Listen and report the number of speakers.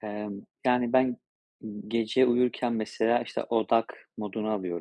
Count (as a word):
one